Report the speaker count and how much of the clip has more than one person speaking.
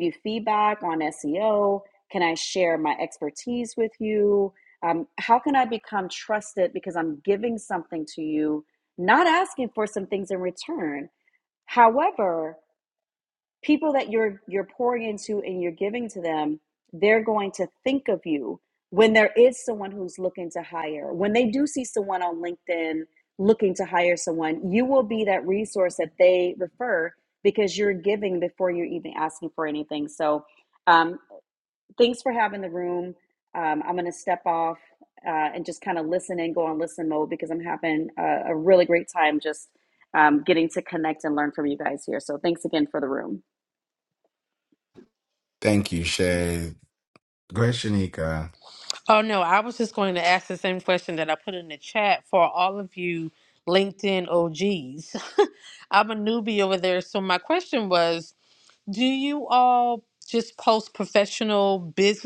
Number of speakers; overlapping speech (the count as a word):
three, no overlap